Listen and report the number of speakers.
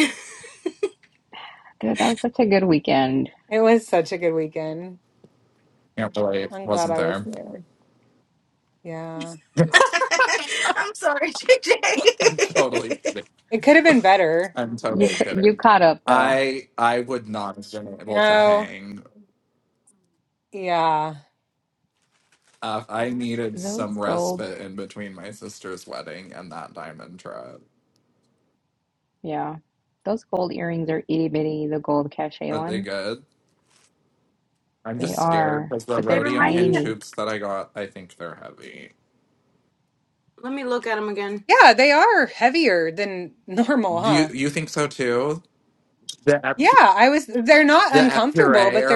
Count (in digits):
4